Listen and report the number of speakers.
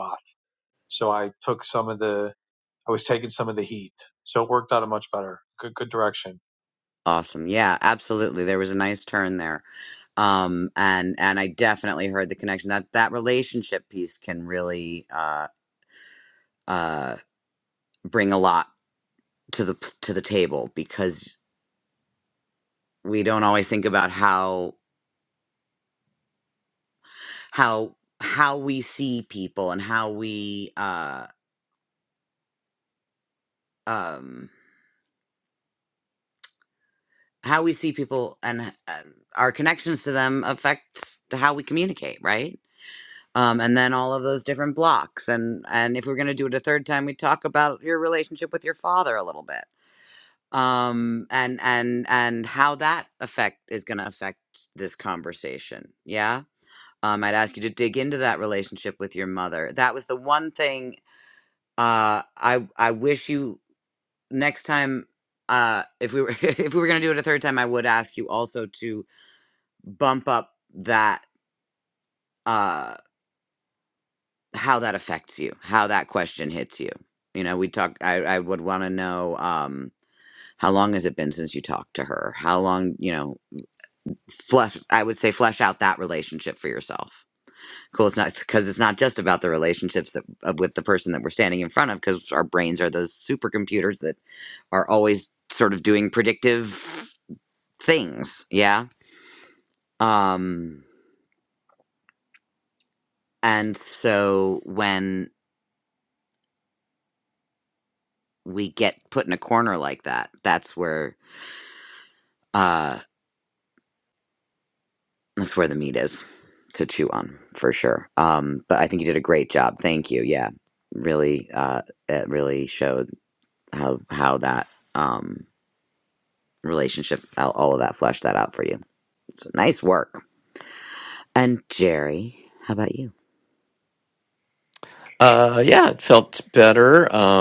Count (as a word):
three